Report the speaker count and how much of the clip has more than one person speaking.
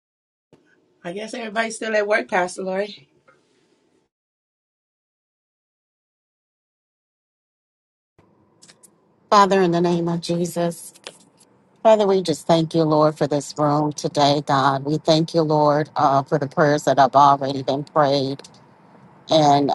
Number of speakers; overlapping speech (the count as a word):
two, no overlap